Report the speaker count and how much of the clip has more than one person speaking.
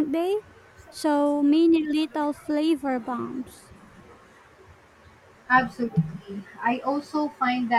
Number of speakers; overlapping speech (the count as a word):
two, no overlap